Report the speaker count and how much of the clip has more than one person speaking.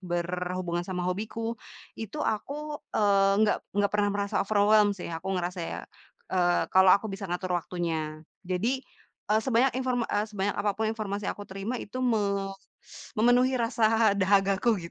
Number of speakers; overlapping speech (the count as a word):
one, no overlap